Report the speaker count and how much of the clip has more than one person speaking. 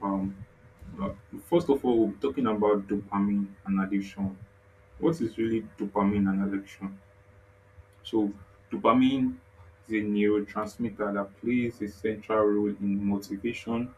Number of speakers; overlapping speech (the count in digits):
1, no overlap